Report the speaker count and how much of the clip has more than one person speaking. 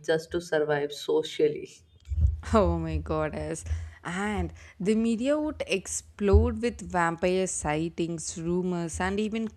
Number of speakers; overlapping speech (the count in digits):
2, no overlap